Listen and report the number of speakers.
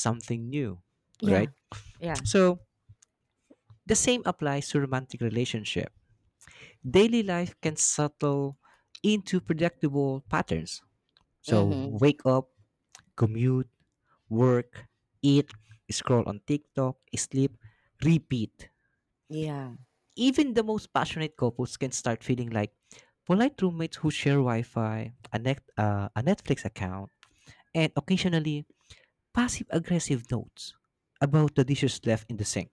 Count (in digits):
2